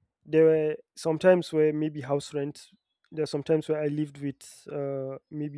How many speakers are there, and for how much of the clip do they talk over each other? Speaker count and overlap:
1, no overlap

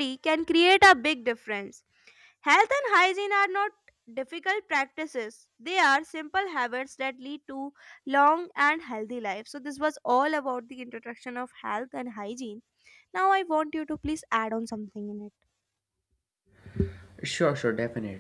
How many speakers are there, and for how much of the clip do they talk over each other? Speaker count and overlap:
2, no overlap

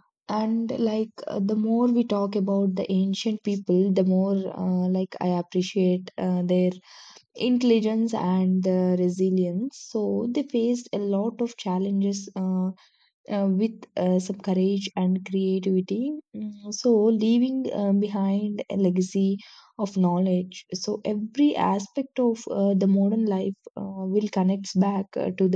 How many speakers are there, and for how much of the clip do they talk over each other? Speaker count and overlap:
1, no overlap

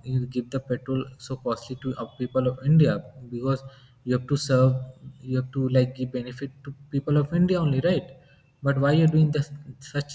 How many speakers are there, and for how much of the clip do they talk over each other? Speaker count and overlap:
1, no overlap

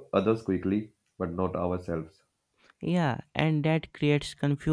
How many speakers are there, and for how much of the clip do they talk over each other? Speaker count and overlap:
2, no overlap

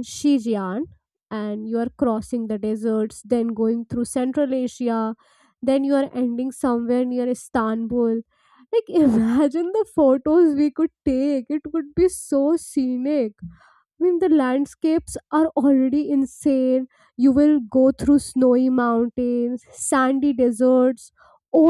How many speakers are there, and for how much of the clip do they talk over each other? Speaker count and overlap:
1, no overlap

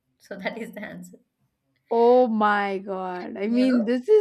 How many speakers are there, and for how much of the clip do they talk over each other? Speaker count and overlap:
2, about 10%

